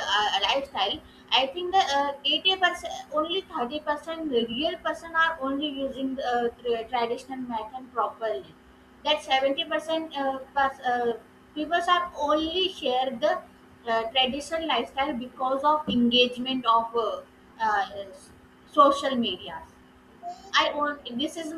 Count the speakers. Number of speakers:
one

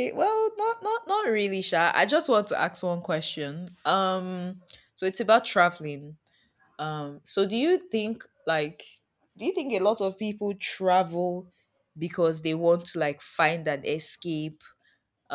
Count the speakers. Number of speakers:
one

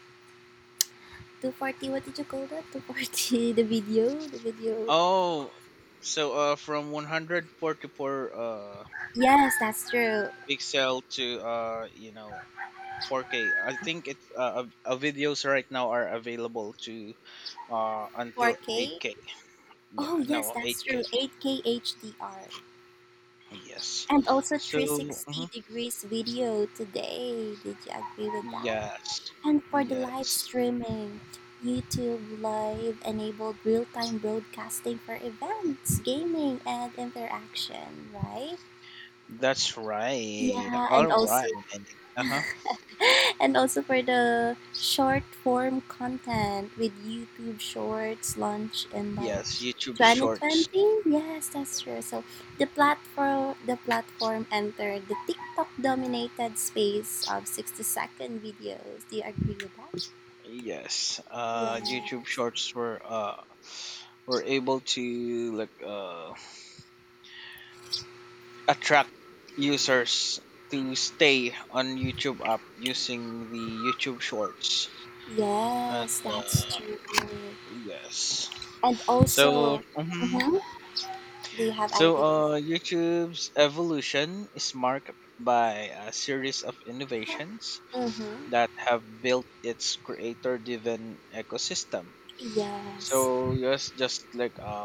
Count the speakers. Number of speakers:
two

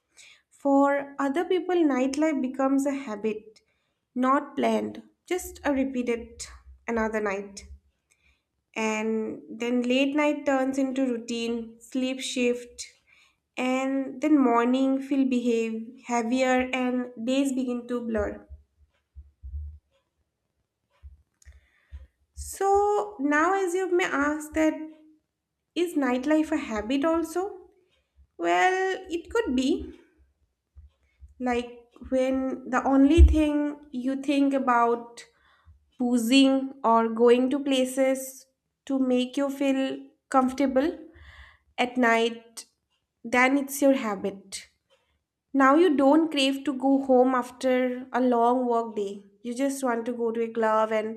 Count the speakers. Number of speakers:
one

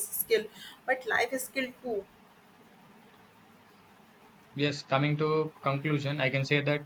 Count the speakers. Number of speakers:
two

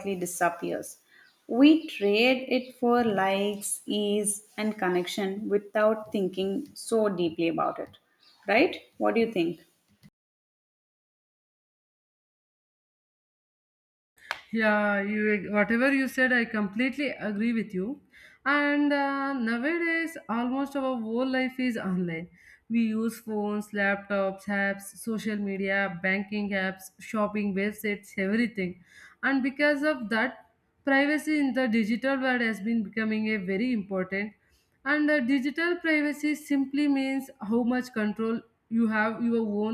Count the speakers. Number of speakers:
two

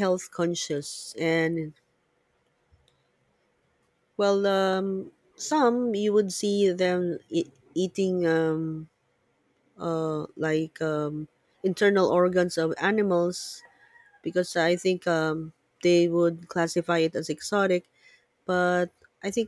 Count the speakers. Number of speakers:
one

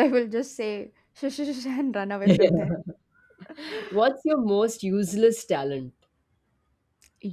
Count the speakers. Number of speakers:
two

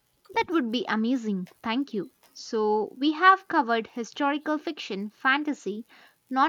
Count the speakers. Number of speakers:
one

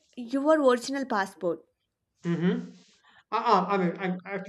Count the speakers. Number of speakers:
two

